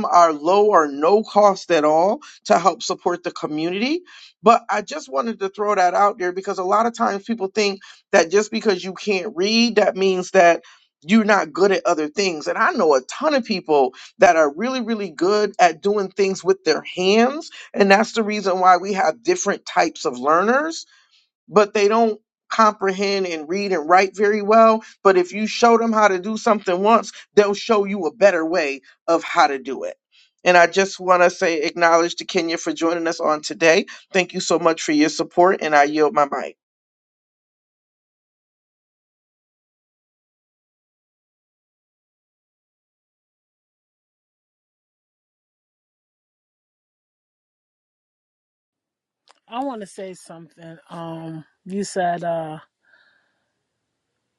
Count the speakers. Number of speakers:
two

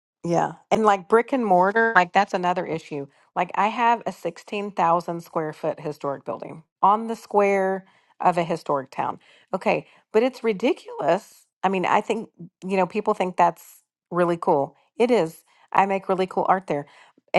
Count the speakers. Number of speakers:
one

